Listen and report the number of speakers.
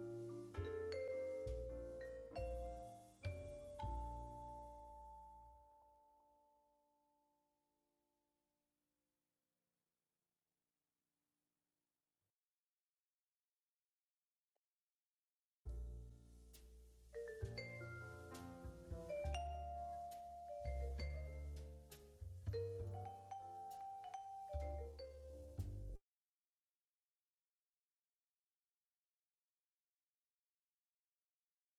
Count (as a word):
zero